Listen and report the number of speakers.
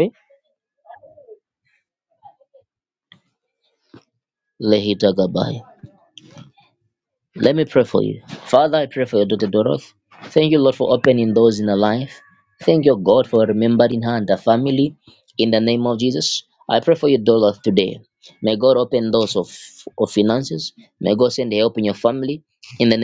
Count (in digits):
1